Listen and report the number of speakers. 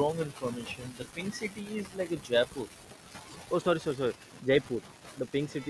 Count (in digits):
2